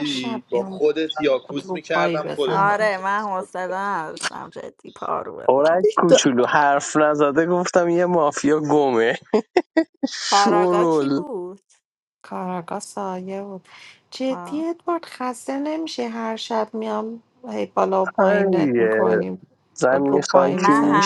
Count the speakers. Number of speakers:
4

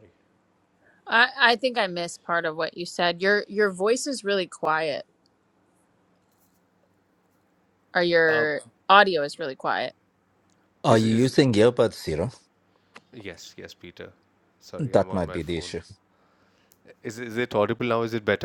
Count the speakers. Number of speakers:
3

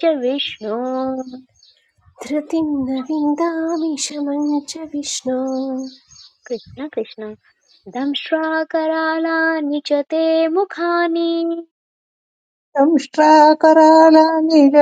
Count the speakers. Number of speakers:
3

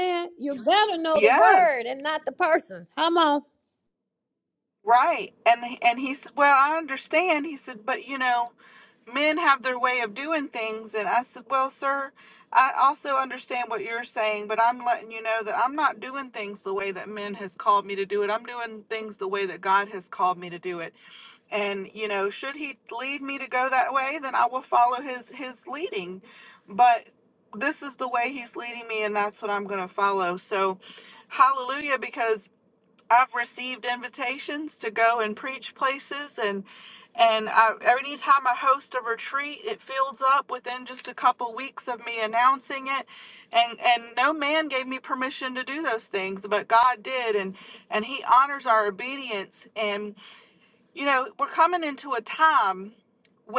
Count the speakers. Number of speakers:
2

